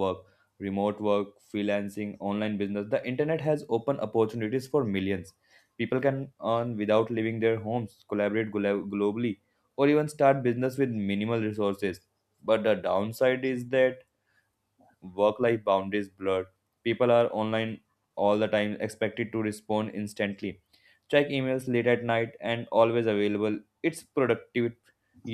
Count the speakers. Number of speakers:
one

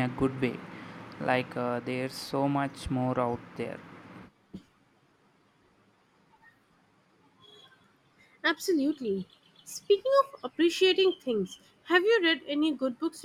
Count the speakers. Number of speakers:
two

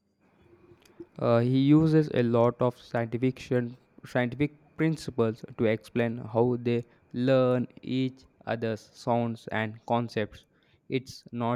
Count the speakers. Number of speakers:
one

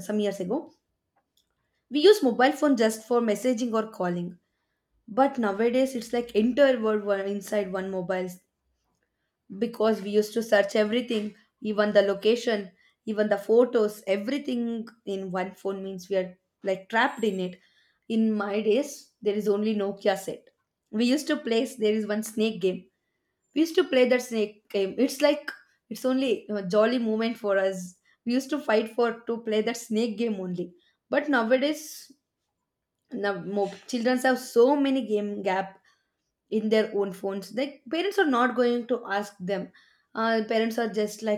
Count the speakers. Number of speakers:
one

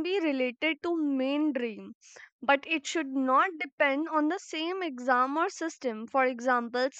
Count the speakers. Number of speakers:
one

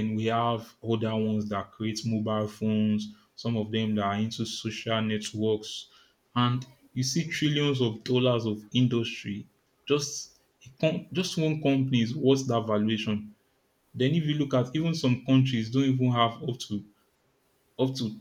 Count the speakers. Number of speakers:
one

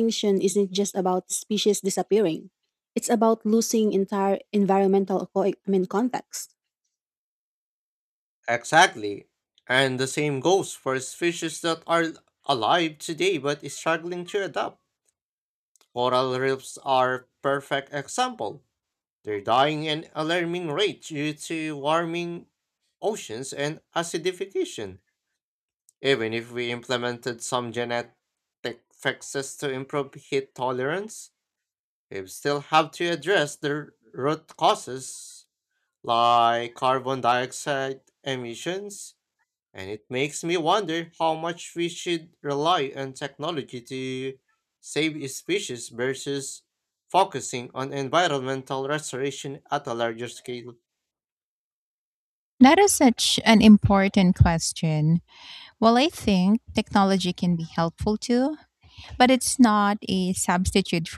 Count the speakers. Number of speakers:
three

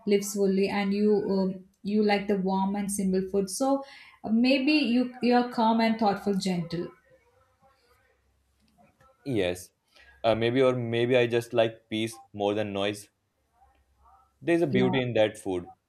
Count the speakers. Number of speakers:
two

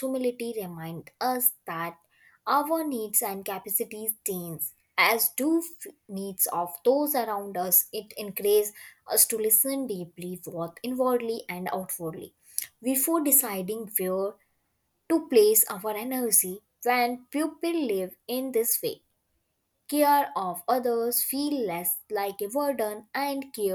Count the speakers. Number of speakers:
one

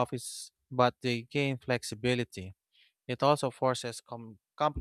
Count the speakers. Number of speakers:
one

